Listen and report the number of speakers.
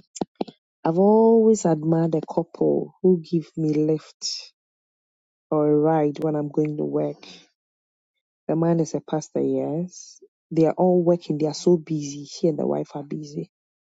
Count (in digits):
1